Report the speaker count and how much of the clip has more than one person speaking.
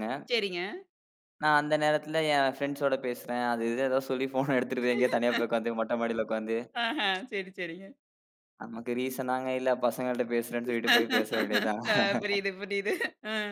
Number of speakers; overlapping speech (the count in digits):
2, no overlap